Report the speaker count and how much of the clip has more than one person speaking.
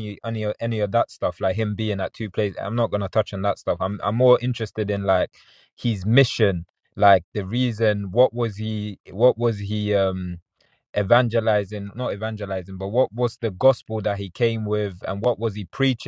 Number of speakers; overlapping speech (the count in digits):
1, no overlap